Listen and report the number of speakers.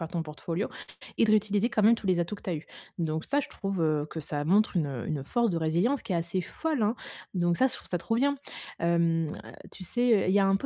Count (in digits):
1